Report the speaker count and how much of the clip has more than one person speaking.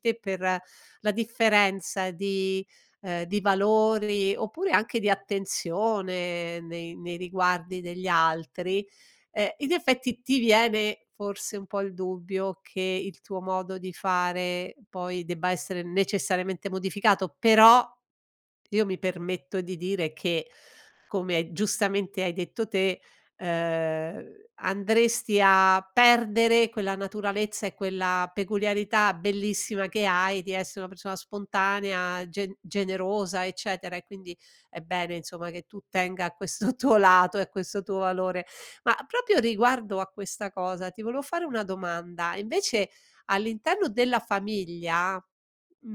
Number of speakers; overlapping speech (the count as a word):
one, no overlap